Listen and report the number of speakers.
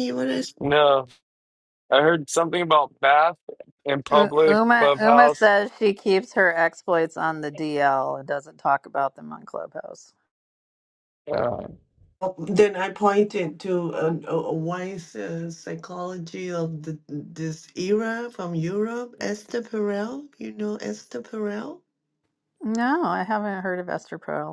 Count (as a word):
three